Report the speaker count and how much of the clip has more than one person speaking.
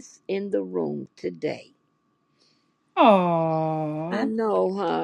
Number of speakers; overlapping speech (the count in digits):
2, no overlap